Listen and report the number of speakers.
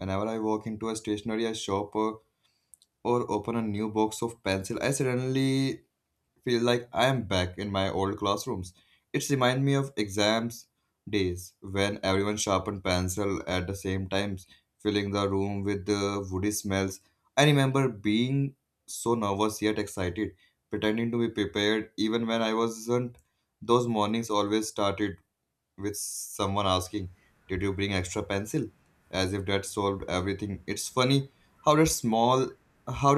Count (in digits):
1